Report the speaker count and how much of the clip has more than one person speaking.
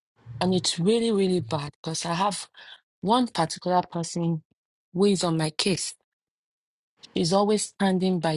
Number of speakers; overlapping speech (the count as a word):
one, no overlap